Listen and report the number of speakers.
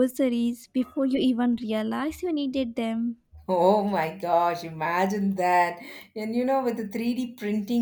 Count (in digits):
2